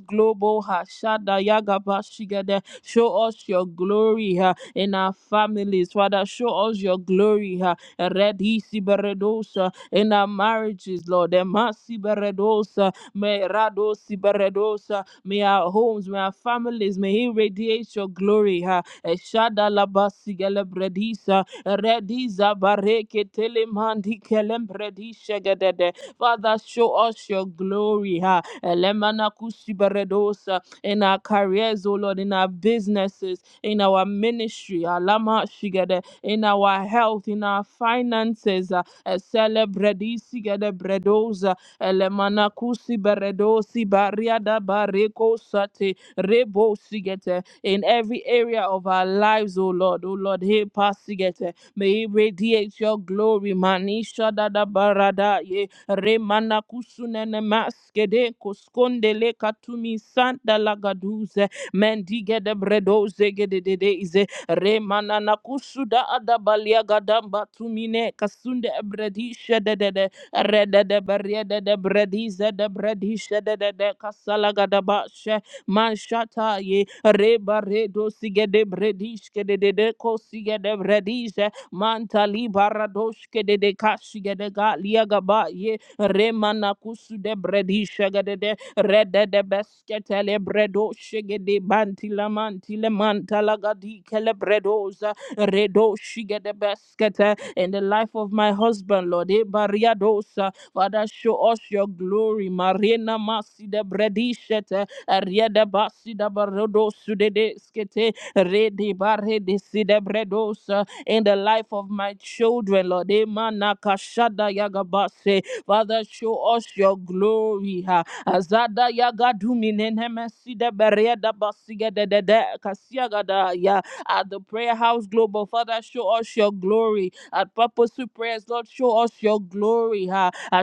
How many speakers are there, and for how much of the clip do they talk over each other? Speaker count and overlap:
one, no overlap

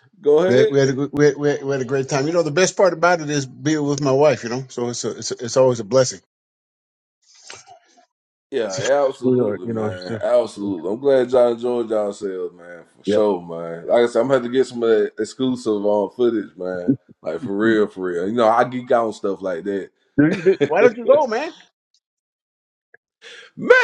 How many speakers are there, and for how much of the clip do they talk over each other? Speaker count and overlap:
two, about 7%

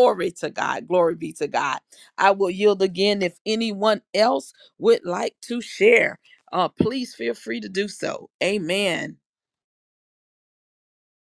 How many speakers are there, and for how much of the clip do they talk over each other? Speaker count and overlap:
one, no overlap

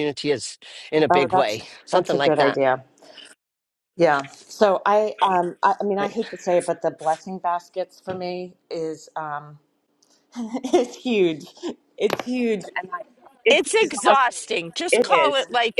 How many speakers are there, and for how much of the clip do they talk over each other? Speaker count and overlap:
three, about 20%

